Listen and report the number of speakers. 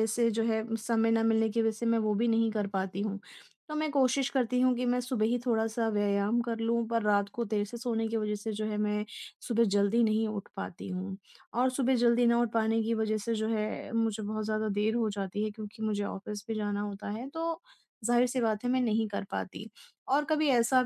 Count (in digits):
1